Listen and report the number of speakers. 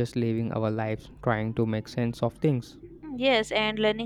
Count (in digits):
2